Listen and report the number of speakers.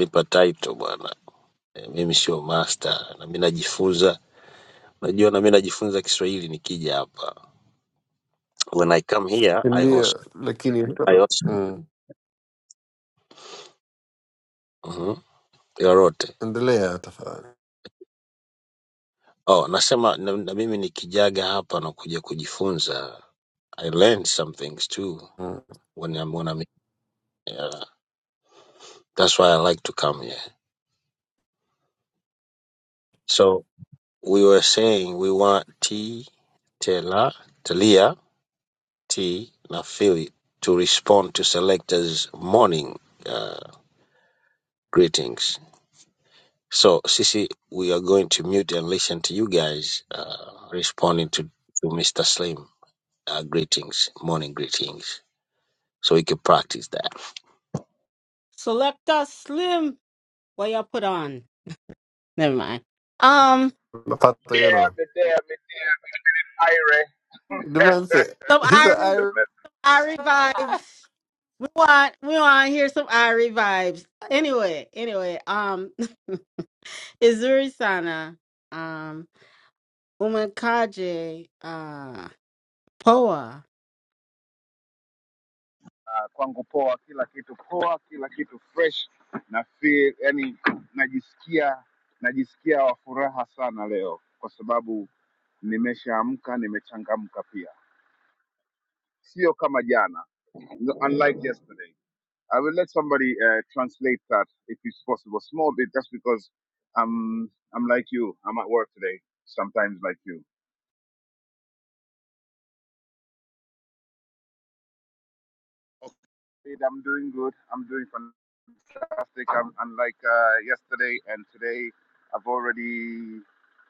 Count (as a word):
four